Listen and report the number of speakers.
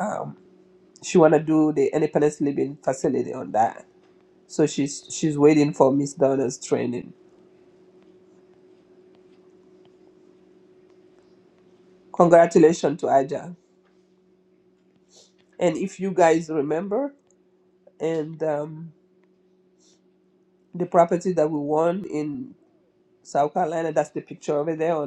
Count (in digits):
1